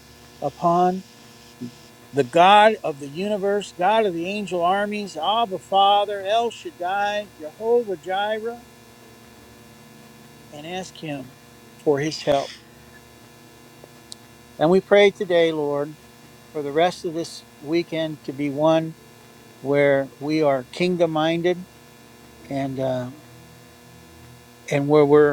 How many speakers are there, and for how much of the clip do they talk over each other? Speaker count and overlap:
one, no overlap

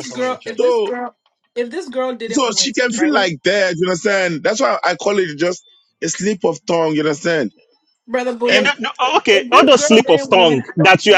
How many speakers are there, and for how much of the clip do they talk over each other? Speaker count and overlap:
three, about 36%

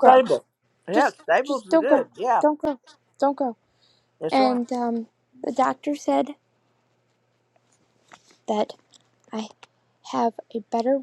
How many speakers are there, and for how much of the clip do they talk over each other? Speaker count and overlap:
two, about 11%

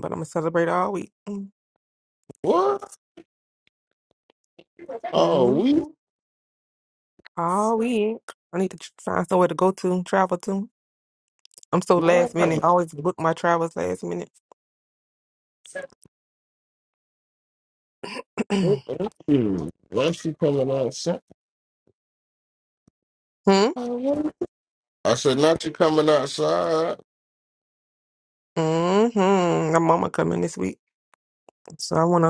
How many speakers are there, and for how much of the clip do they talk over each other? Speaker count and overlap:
two, about 4%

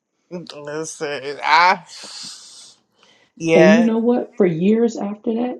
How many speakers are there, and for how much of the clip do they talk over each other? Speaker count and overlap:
two, about 6%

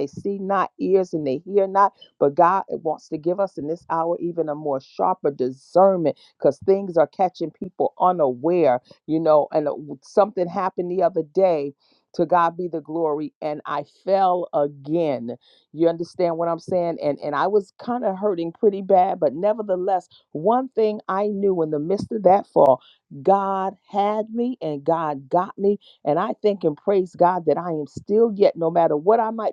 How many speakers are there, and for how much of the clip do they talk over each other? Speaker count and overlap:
one, no overlap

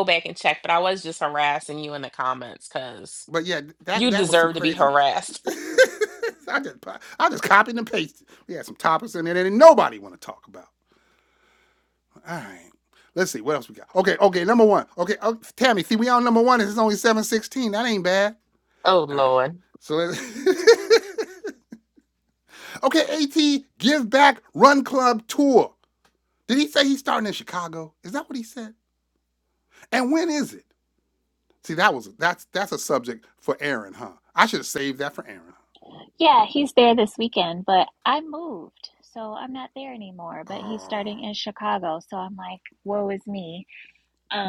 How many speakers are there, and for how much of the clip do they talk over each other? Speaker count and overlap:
three, about 4%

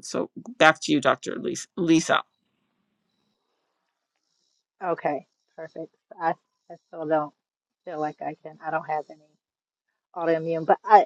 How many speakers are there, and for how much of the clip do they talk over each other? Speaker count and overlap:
two, no overlap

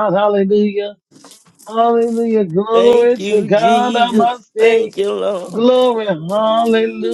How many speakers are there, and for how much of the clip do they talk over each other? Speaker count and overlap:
two, about 41%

